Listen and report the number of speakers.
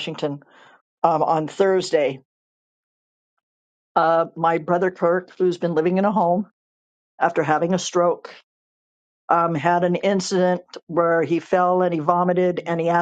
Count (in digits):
1